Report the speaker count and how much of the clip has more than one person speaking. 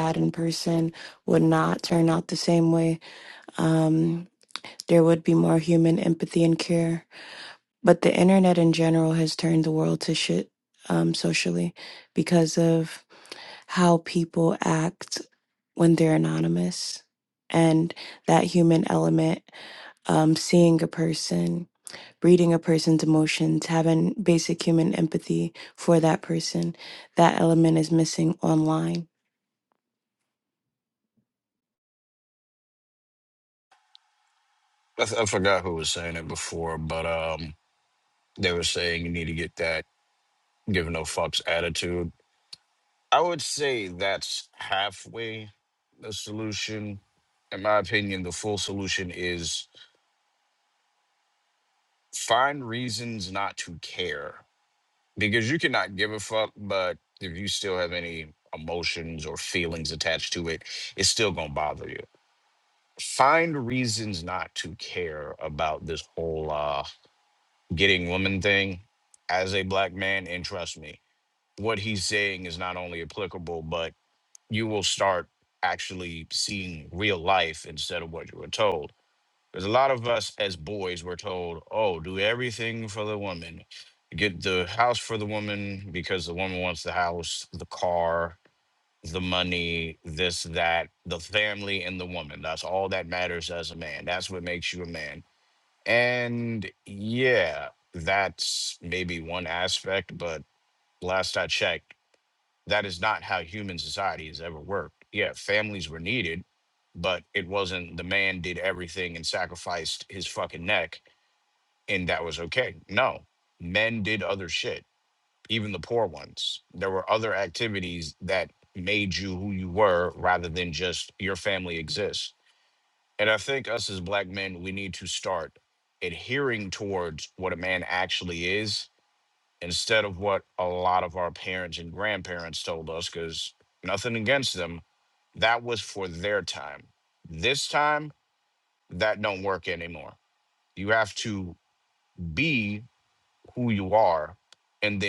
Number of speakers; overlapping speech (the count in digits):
2, no overlap